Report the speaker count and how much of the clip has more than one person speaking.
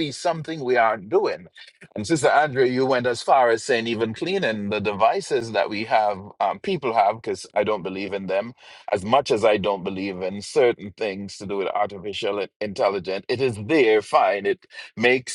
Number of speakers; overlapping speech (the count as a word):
one, no overlap